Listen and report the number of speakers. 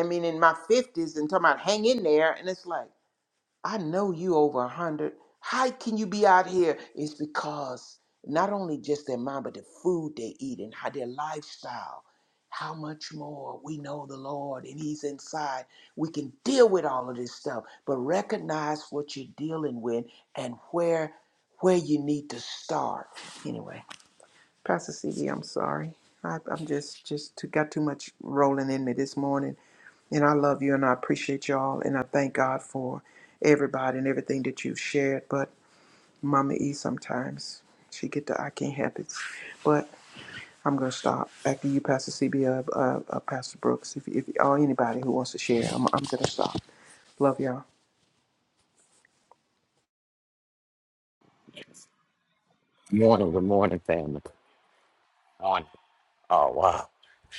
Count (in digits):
2